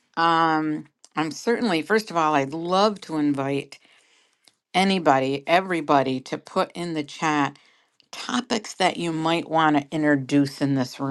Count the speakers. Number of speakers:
one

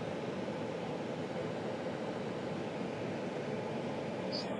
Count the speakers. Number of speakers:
zero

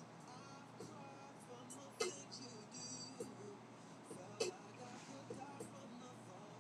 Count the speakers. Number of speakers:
zero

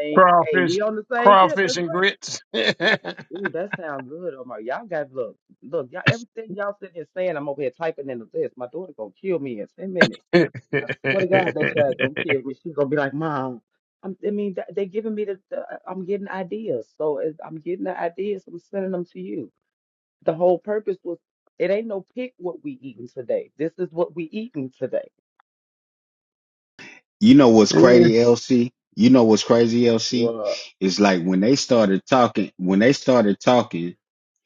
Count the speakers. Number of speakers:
three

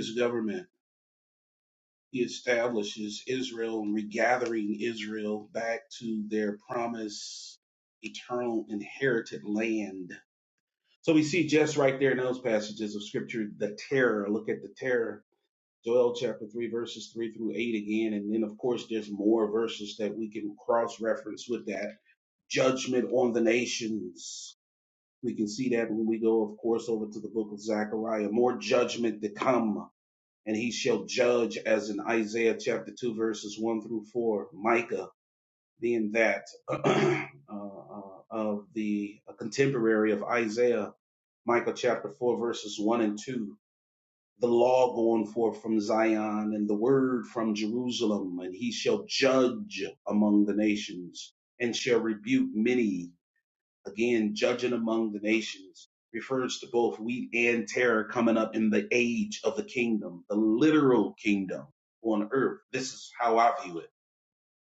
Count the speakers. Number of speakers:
one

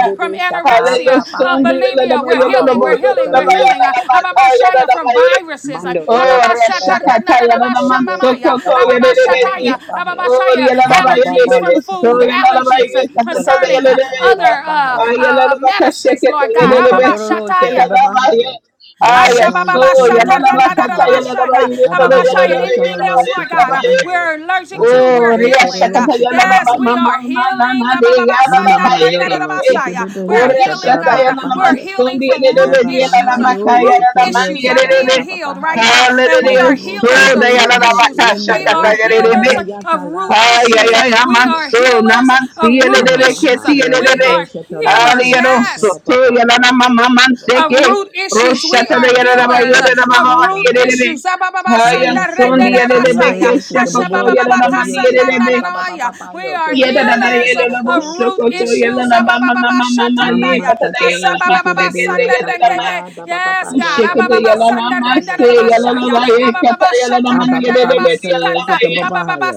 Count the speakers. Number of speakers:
three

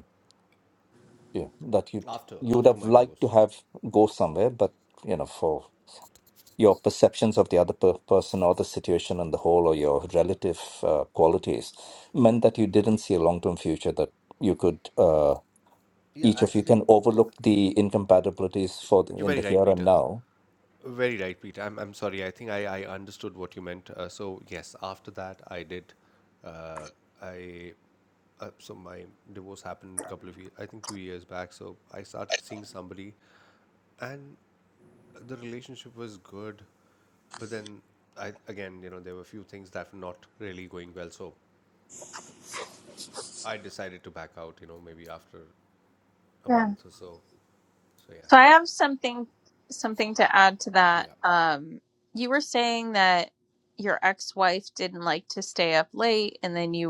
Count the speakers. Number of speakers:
three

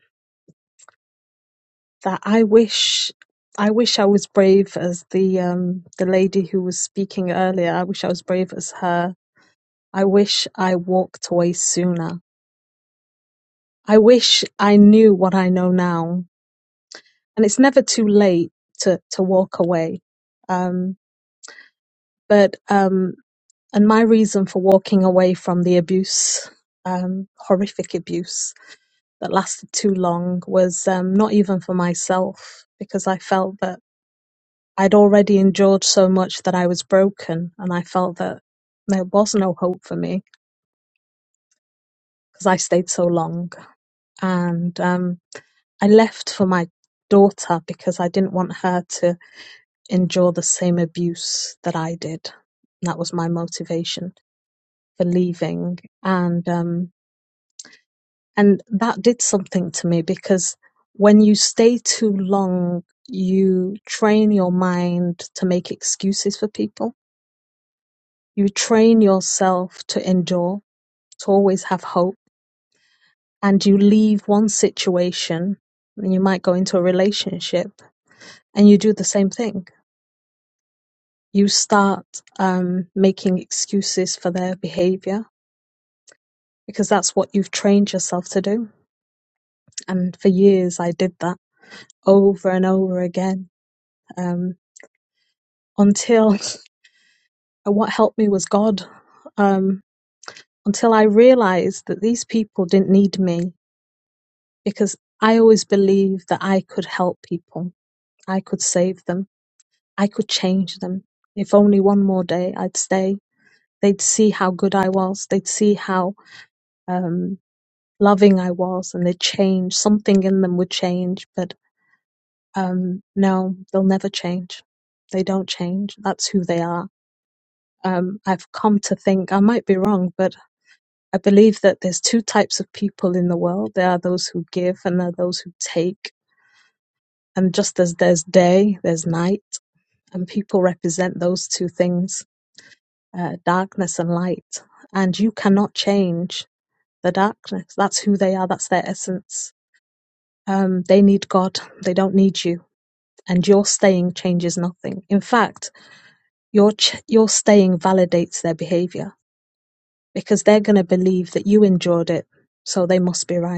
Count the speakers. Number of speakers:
one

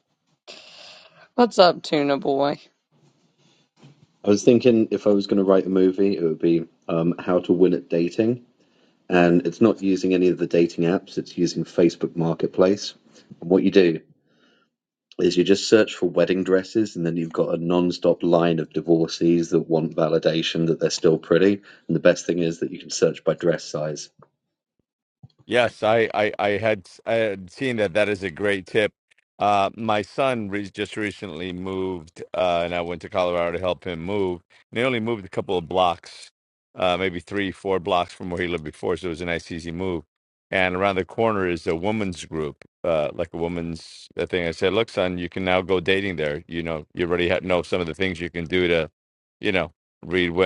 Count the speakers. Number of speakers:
three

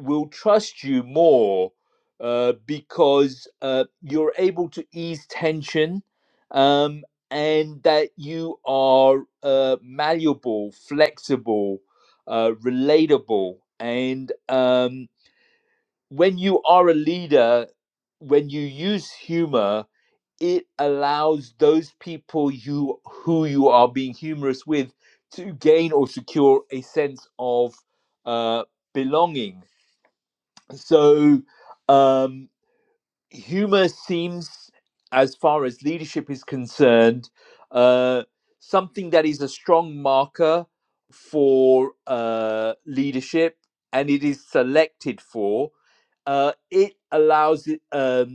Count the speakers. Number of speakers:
one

